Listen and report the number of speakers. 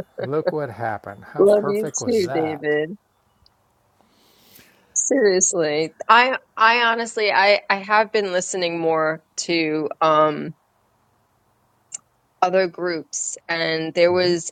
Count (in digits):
2